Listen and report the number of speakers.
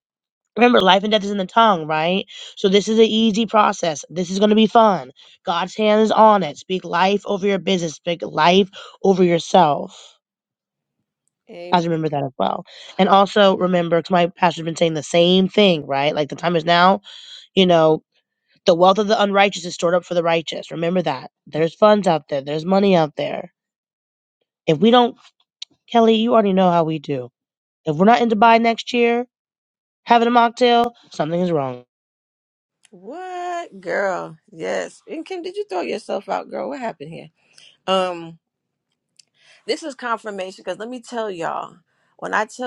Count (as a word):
two